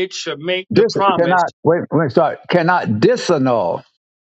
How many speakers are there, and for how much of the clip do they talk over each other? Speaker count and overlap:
two, about 16%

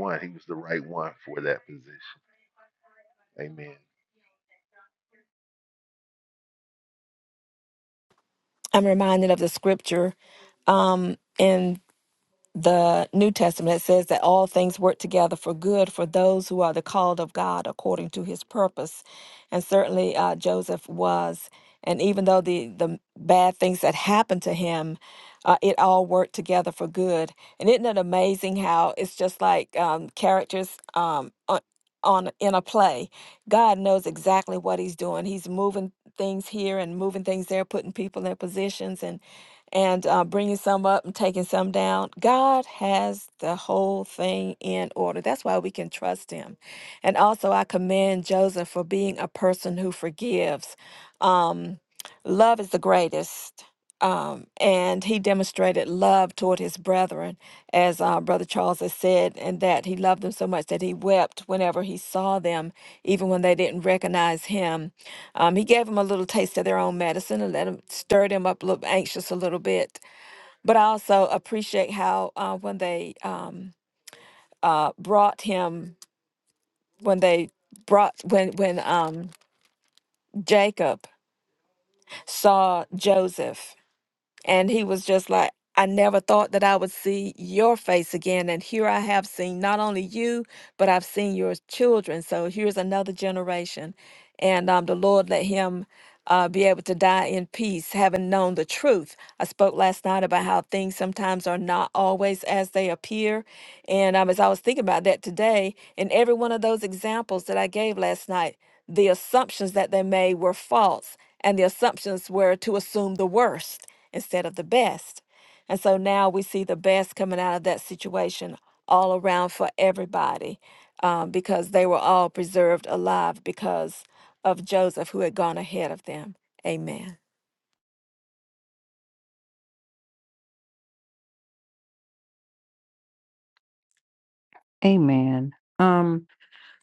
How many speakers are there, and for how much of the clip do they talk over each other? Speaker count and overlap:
three, no overlap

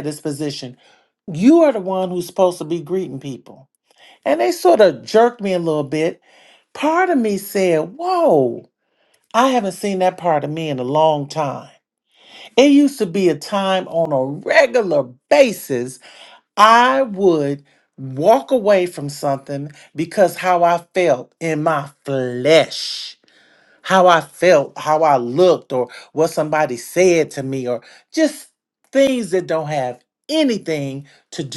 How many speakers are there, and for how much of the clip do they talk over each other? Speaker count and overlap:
one, no overlap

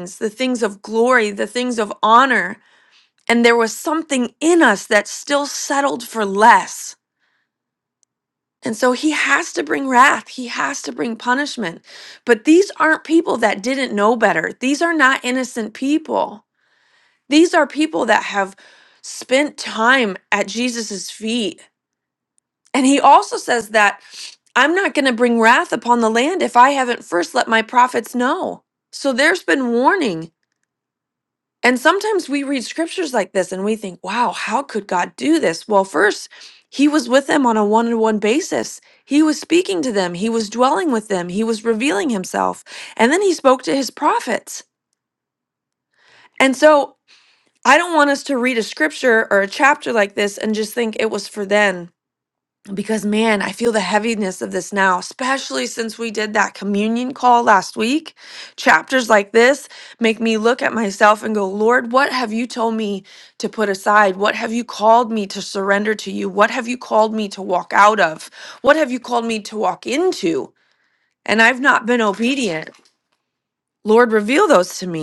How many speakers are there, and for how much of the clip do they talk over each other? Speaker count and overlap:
one, no overlap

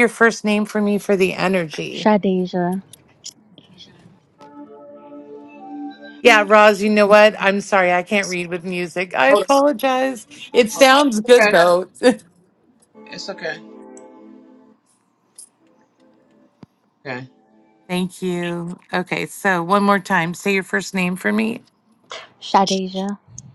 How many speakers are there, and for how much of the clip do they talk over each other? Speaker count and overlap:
three, about 3%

